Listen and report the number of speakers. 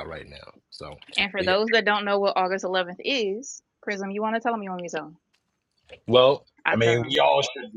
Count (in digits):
3